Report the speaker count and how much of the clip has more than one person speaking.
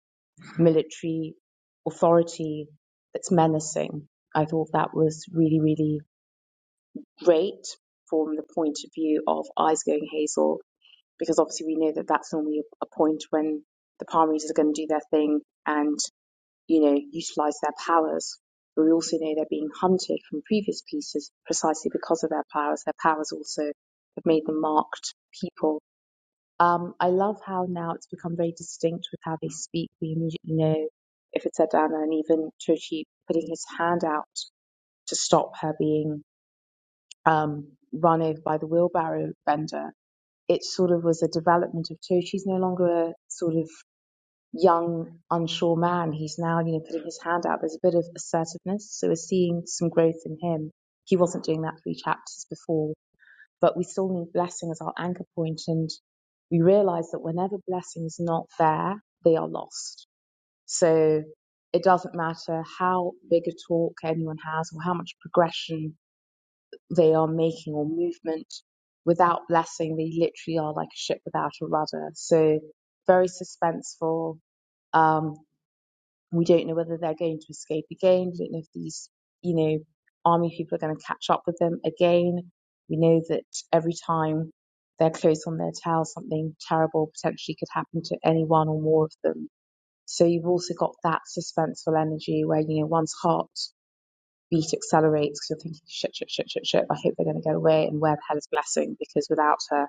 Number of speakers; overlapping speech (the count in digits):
1, no overlap